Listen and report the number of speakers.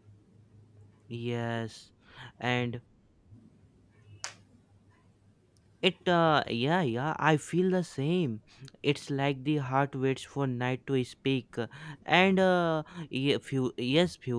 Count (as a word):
one